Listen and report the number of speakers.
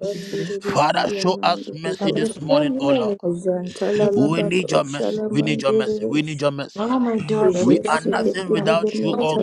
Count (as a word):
three